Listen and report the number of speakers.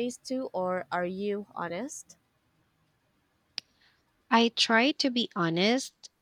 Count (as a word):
two